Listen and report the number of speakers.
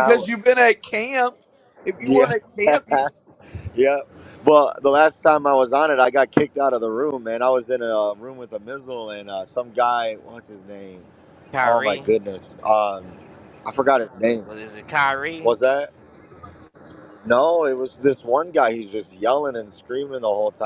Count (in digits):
3